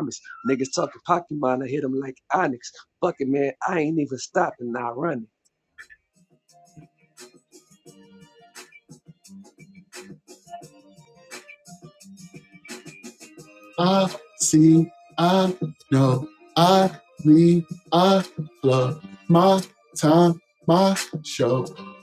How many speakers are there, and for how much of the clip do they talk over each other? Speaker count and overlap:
2, no overlap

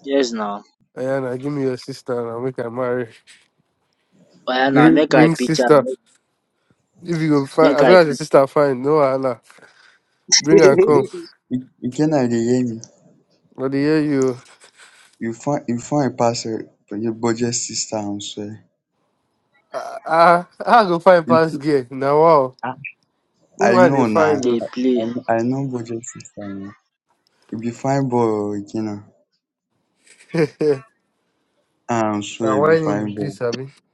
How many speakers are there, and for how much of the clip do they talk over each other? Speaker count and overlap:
3, about 13%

